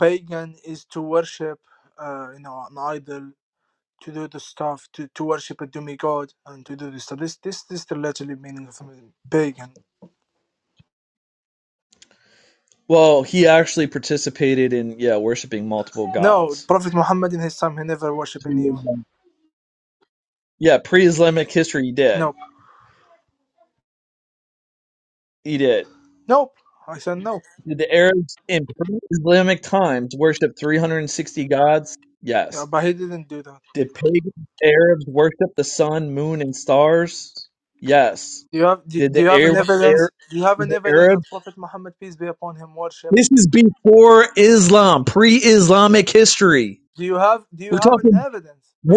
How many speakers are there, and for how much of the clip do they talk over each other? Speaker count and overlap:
two, about 6%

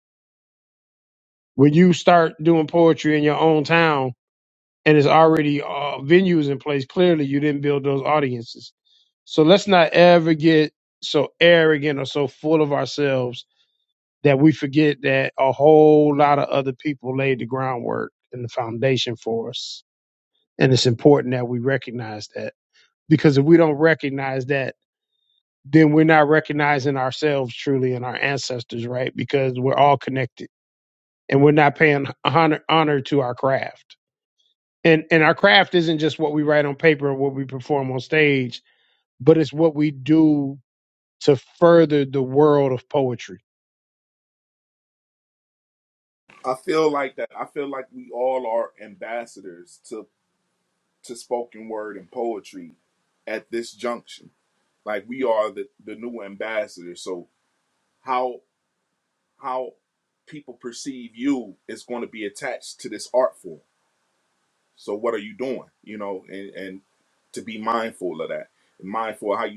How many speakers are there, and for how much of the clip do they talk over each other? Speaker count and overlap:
two, no overlap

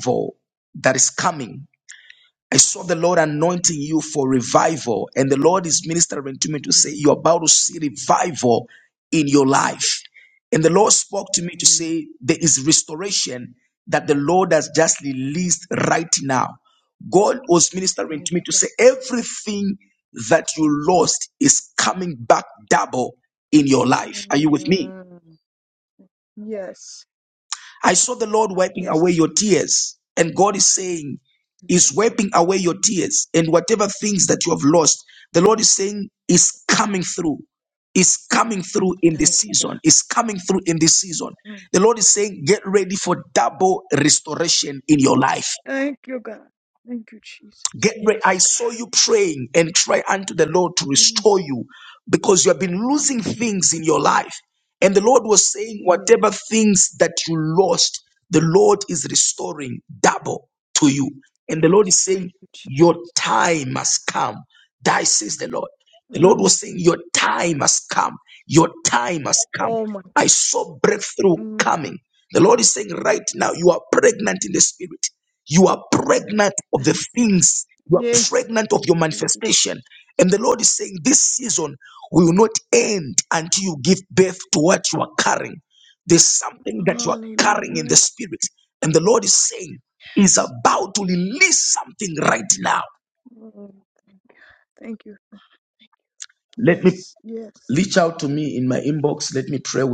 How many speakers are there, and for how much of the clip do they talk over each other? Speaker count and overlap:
two, about 11%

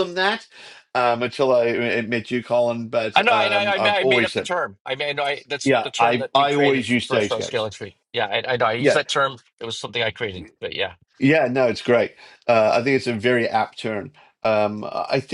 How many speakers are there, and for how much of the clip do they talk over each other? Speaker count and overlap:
two, about 23%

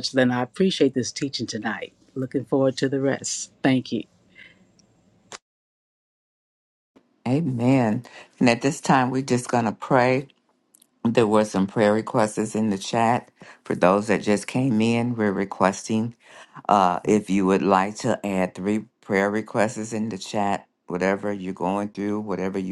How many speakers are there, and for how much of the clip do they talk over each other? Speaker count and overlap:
two, no overlap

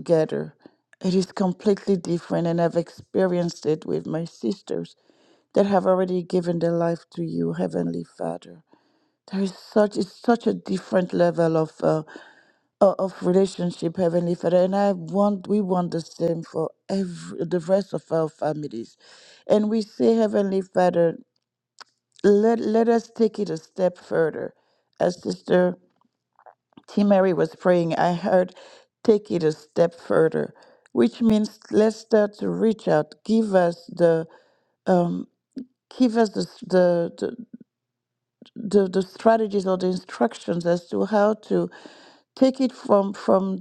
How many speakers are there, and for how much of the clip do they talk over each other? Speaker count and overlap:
one, no overlap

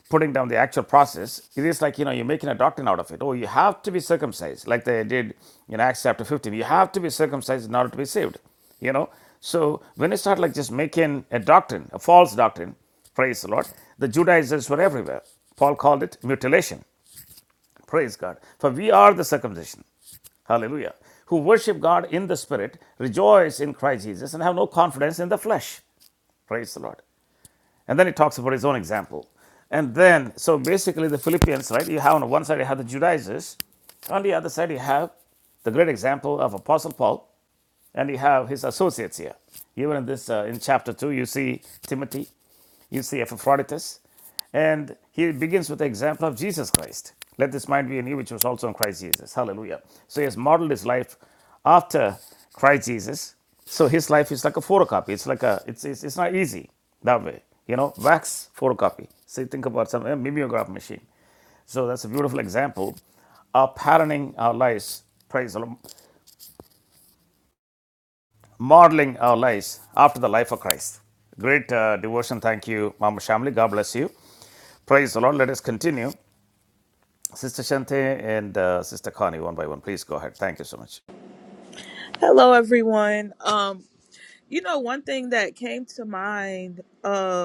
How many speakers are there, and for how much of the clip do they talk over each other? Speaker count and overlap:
two, no overlap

